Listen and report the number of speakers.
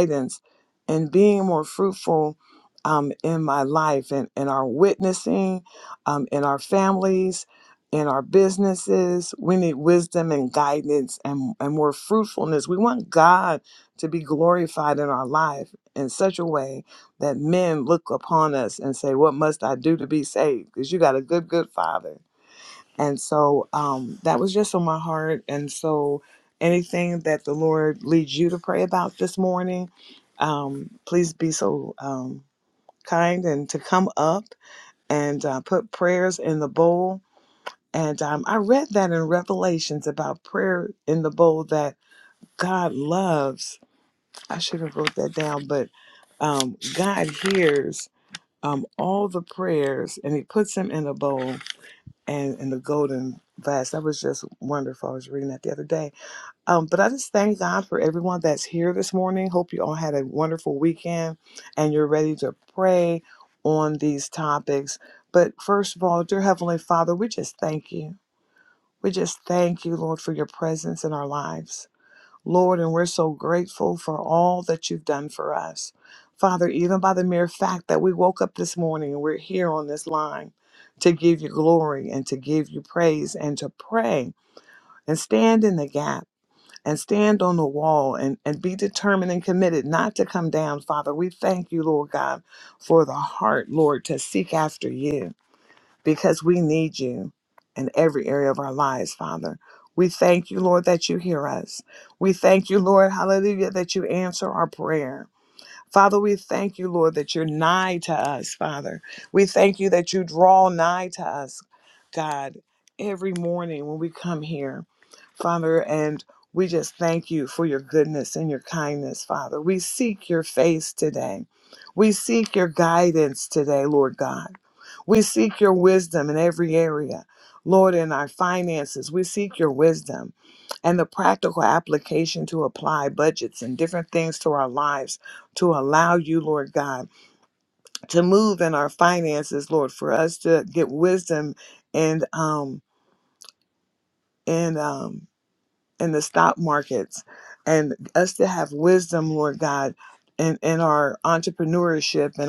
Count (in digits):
1